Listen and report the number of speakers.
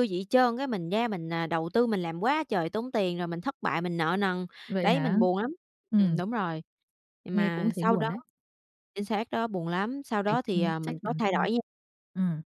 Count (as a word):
two